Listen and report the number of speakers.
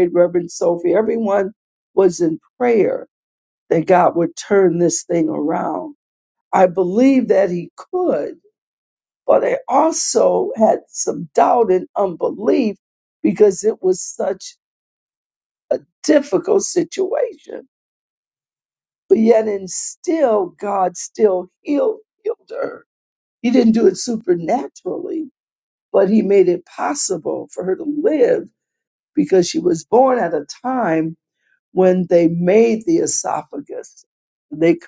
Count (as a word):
one